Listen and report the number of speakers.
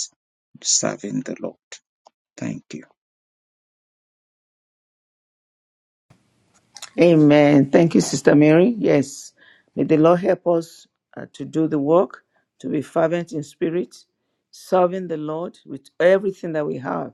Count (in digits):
2